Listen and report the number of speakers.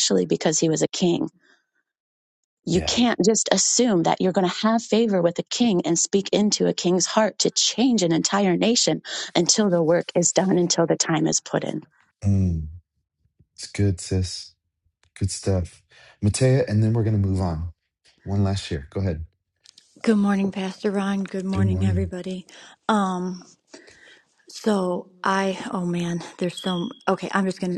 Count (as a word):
three